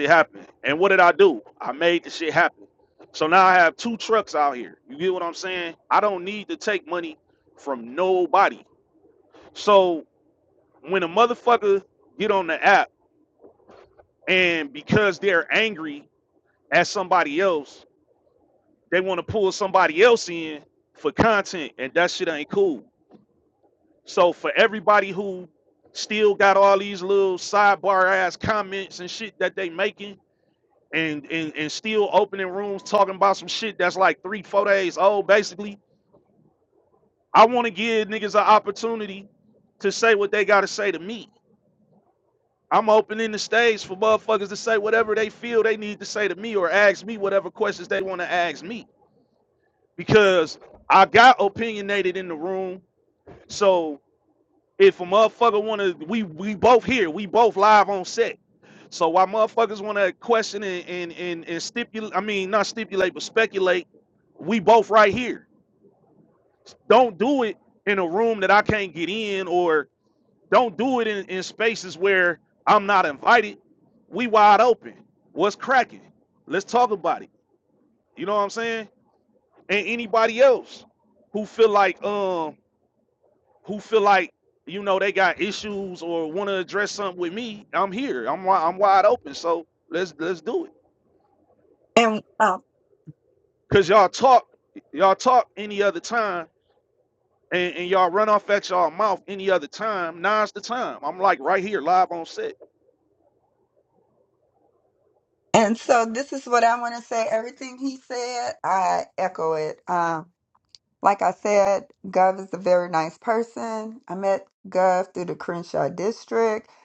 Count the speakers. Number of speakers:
2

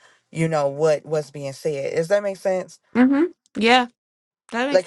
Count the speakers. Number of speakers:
2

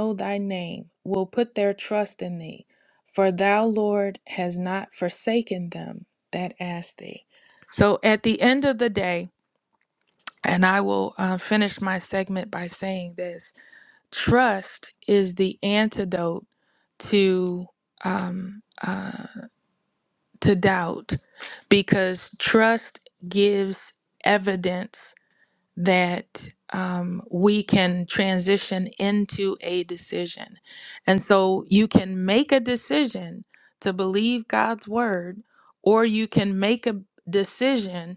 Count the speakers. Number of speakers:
1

